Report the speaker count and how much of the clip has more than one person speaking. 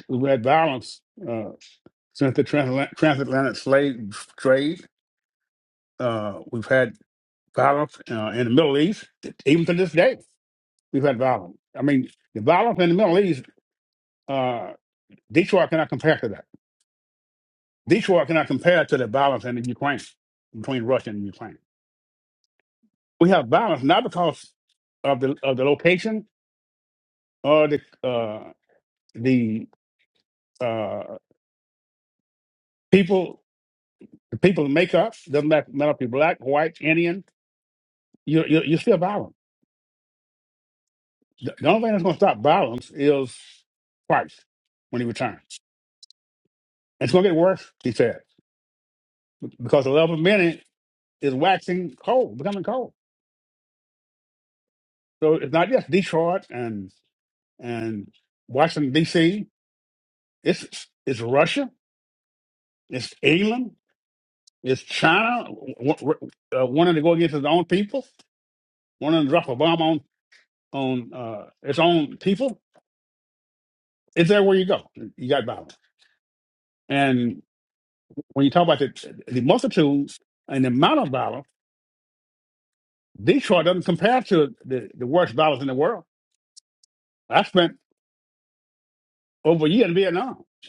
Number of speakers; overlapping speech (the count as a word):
one, no overlap